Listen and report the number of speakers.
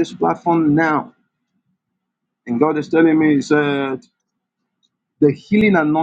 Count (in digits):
1